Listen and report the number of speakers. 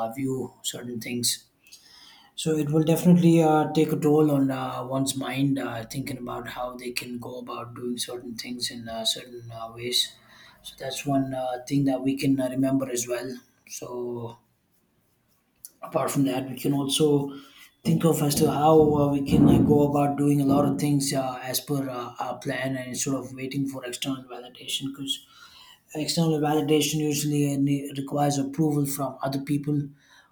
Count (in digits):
1